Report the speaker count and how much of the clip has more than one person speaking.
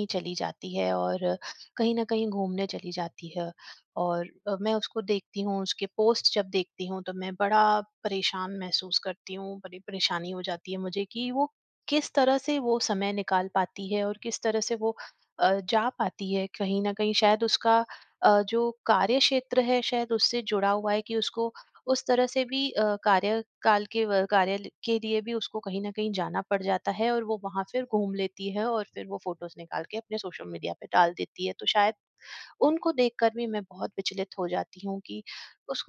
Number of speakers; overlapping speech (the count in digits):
1, no overlap